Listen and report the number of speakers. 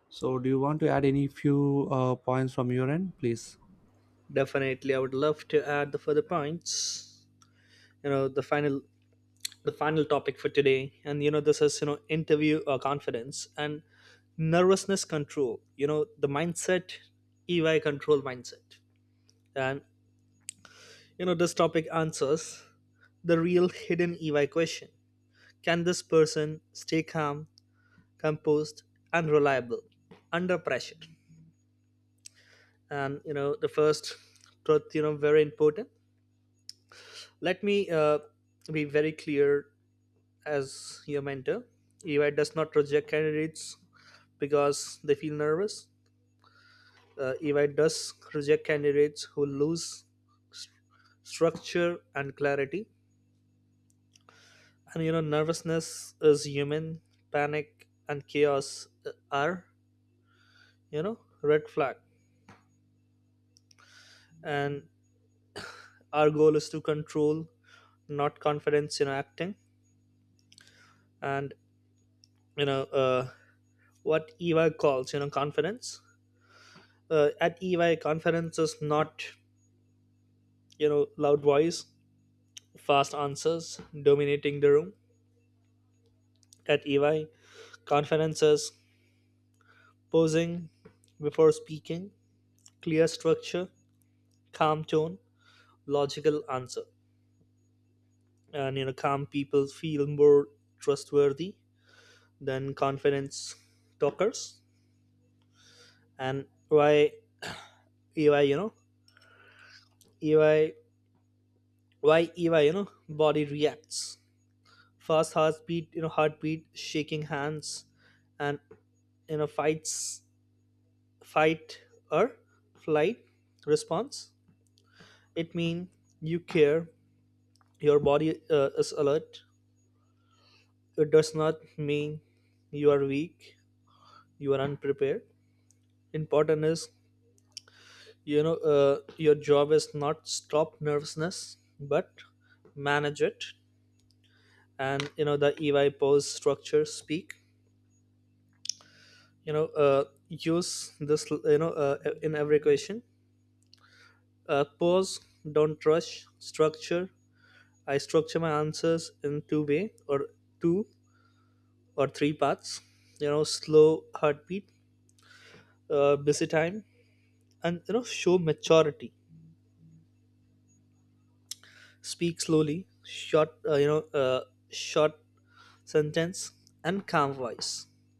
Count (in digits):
2